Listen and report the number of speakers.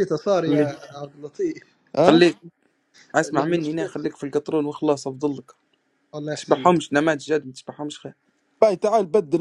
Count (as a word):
three